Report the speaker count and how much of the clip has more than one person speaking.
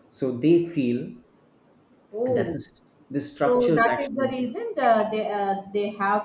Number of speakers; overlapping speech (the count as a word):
two, about 20%